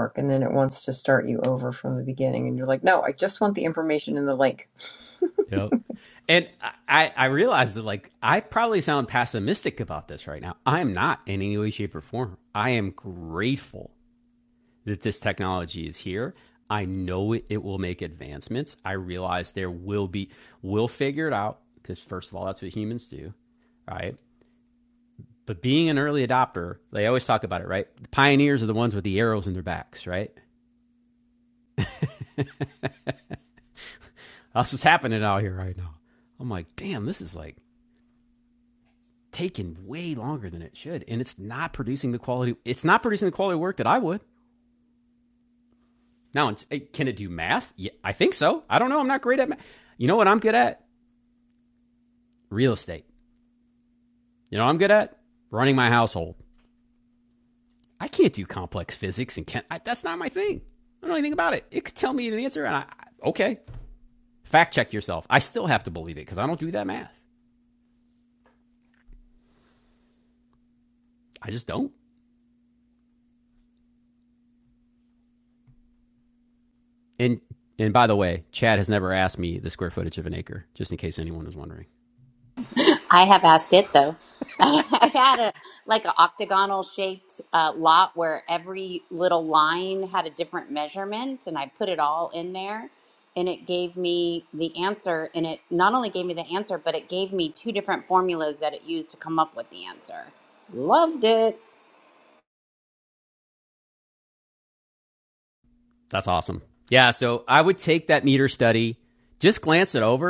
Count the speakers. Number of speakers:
3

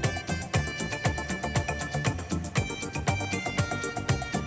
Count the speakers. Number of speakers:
0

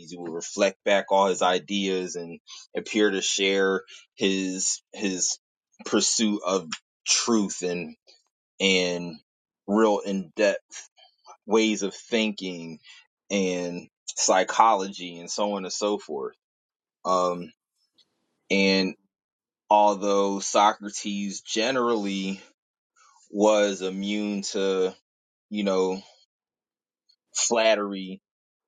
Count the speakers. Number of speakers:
1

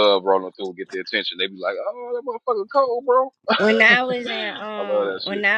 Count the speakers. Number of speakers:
2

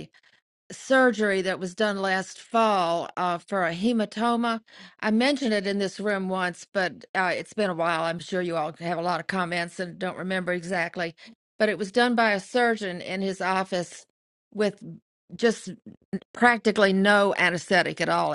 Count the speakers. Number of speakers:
1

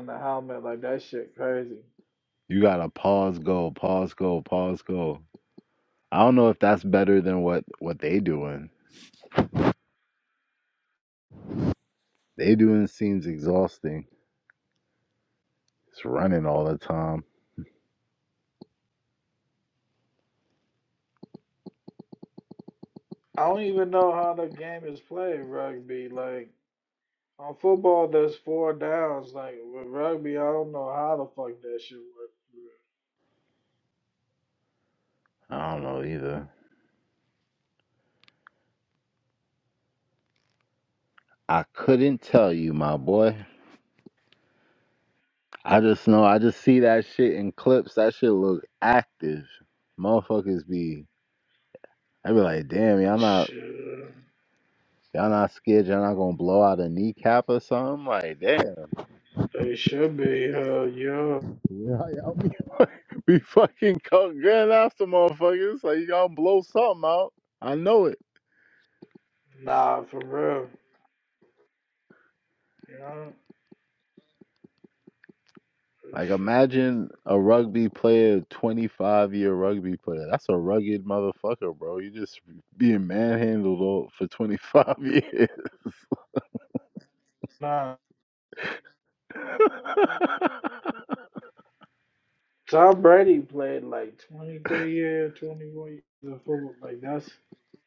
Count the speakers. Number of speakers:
2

